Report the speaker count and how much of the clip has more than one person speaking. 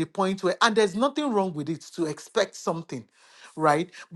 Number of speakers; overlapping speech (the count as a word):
one, no overlap